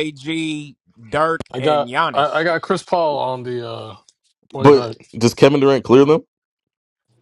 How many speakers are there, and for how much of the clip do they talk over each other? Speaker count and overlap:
3, about 14%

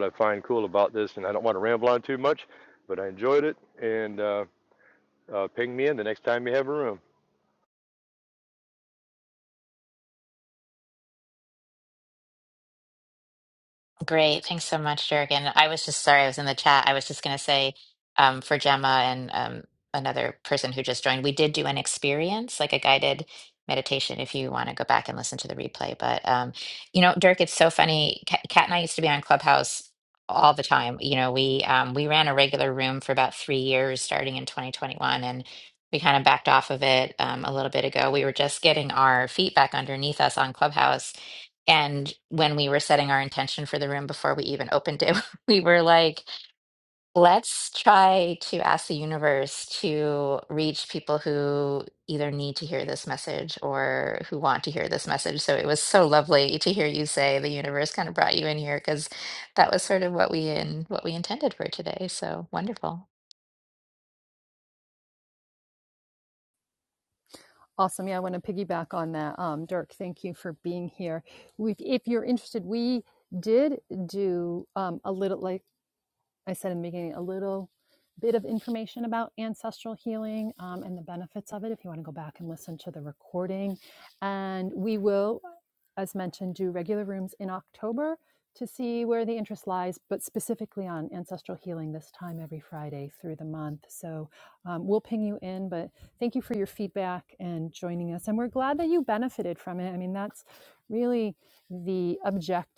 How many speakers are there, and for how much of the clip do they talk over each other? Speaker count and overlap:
3, no overlap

